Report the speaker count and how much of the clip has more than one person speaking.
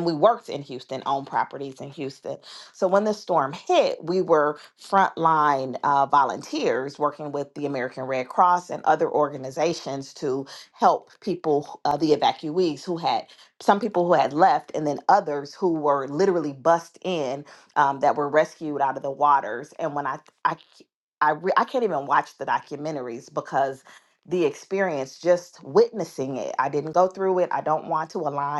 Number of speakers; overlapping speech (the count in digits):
1, no overlap